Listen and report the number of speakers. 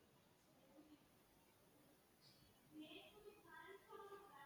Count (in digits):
0